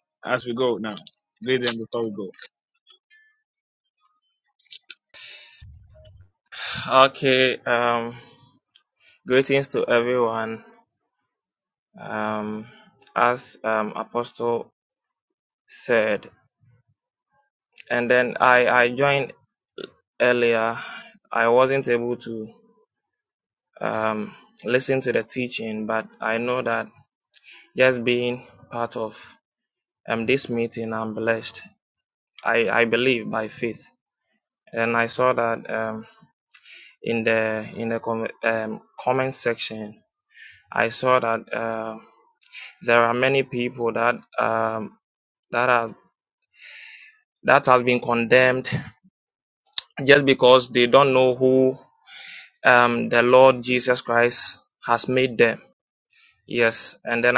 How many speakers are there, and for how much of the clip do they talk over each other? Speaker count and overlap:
two, no overlap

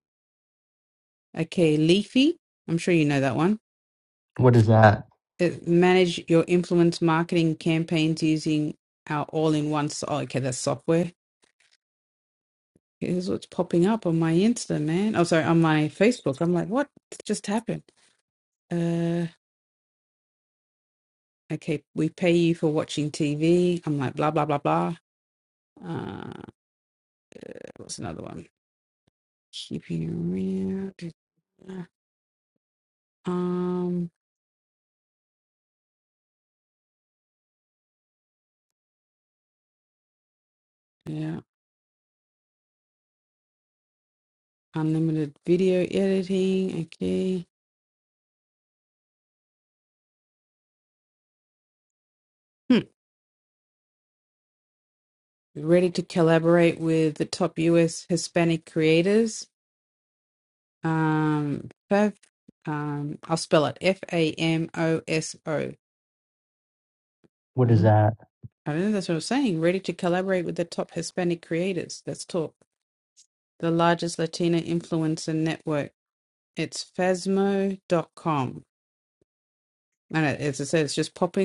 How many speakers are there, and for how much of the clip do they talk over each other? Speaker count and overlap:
two, under 1%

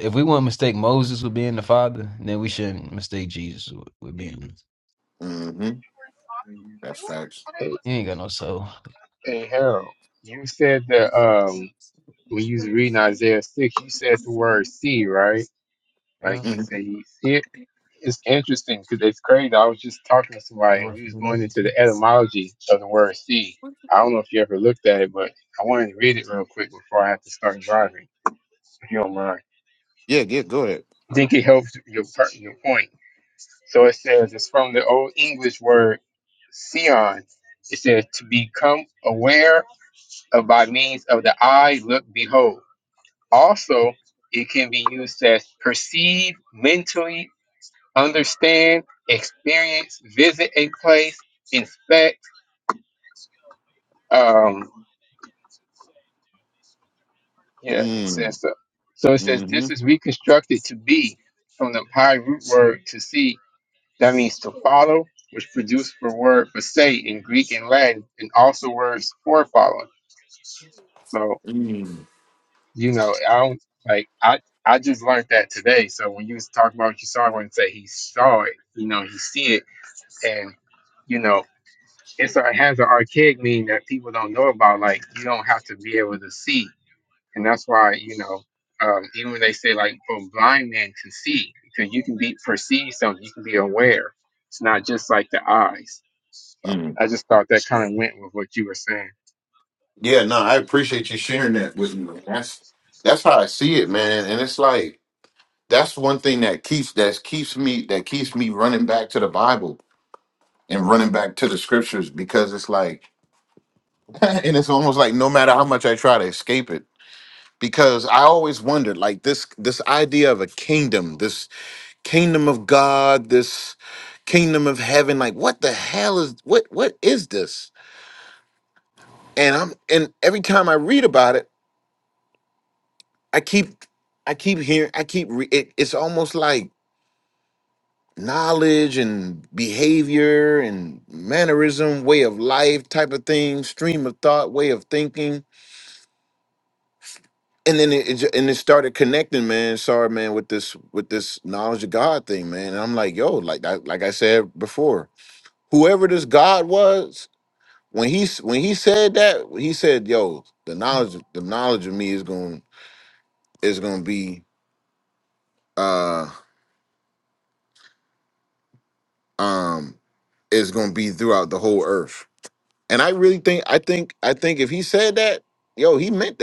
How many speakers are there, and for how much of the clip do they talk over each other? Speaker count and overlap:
three, about 1%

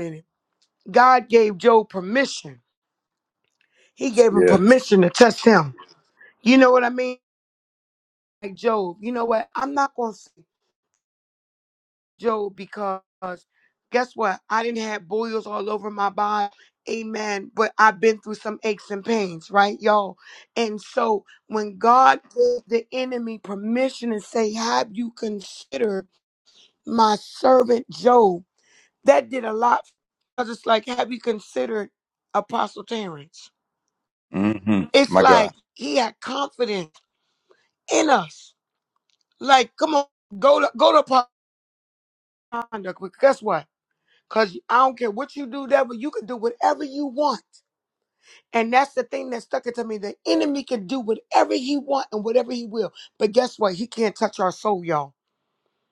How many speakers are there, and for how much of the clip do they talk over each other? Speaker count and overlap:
two, about 2%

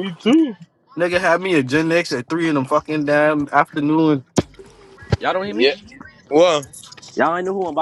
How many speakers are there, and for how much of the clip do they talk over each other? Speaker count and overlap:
three, about 3%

